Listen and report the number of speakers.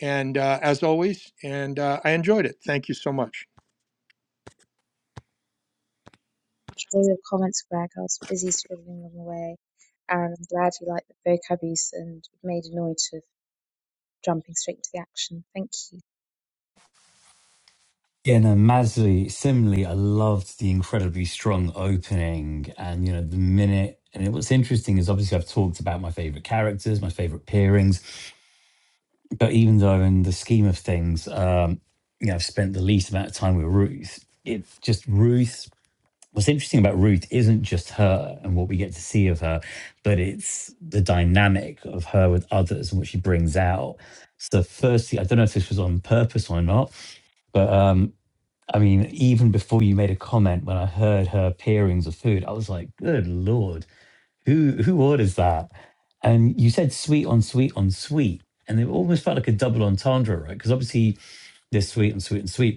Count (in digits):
3